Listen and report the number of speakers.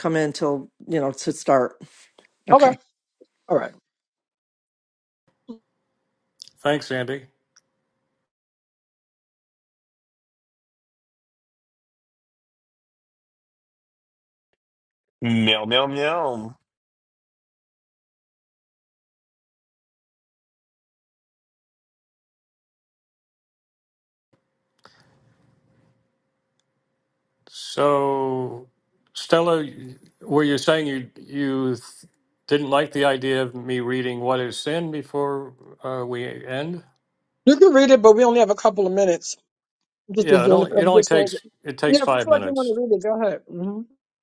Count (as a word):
four